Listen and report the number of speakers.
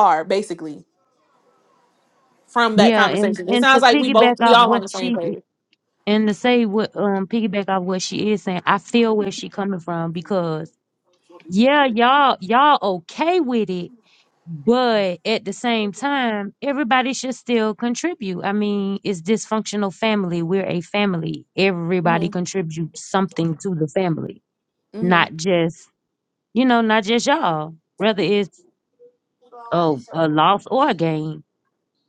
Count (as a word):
two